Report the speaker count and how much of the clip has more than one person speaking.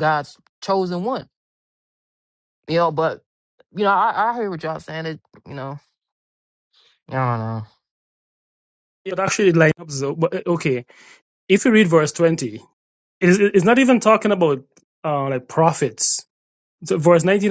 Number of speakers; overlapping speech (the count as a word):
two, no overlap